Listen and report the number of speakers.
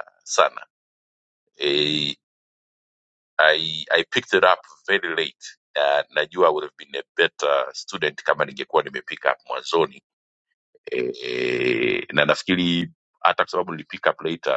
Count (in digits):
1